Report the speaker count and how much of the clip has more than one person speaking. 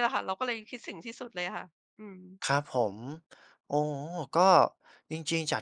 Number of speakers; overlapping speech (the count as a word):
two, no overlap